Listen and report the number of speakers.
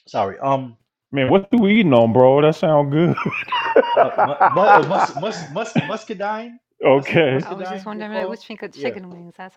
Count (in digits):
3